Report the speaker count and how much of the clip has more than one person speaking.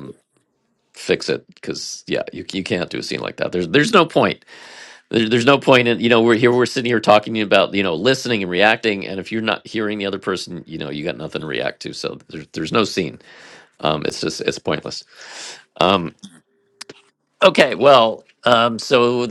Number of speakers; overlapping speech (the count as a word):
one, no overlap